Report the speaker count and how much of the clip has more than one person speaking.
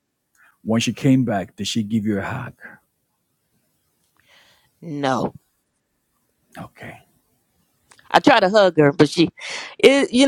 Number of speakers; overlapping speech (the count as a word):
two, no overlap